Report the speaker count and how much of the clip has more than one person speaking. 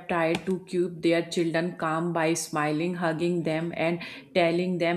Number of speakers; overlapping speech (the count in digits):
1, no overlap